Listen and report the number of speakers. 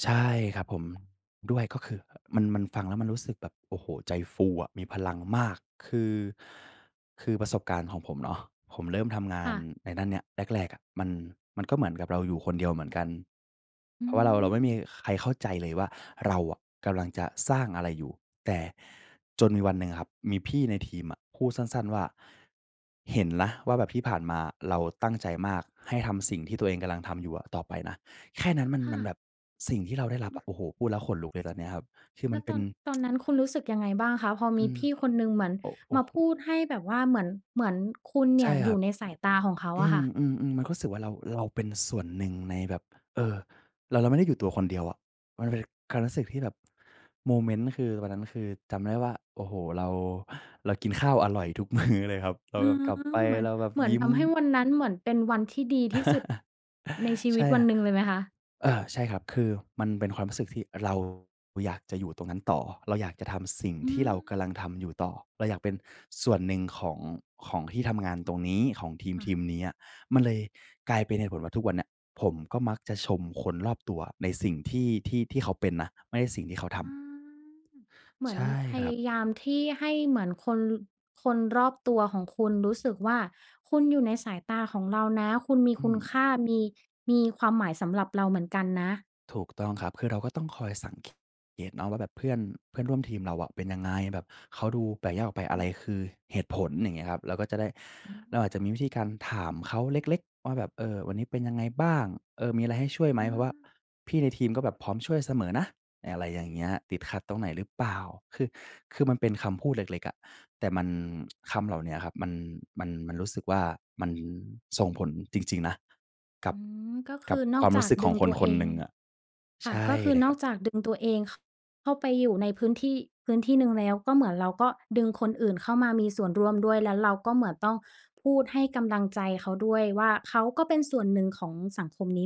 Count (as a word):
two